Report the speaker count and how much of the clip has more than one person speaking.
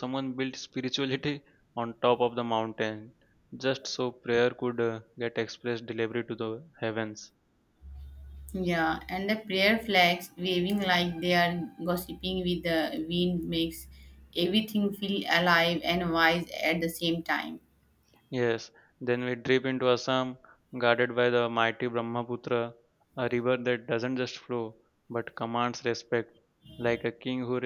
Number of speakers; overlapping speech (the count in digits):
2, no overlap